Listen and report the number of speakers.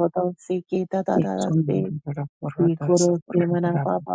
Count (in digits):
2